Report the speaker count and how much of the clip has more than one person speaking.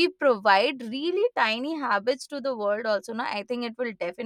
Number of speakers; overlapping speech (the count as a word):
one, no overlap